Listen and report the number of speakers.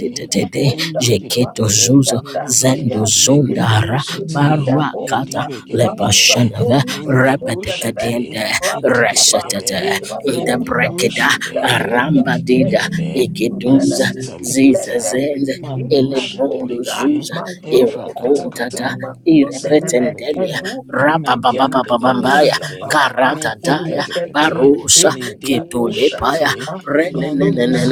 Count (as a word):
three